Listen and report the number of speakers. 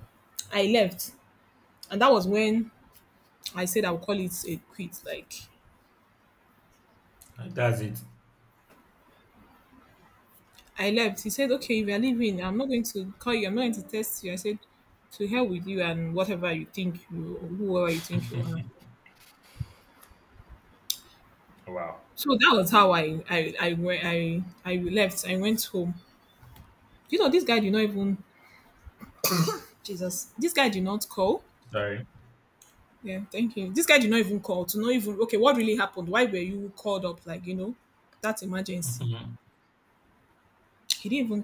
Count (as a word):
two